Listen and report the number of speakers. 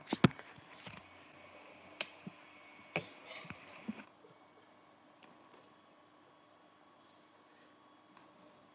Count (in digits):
0